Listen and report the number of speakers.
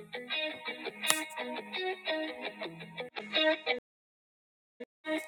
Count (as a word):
zero